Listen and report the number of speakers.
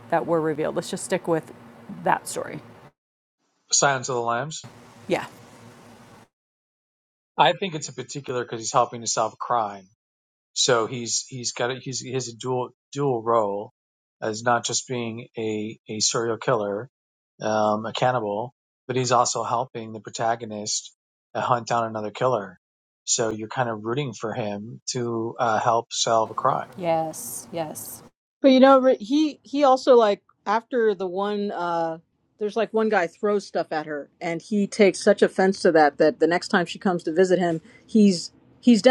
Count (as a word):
three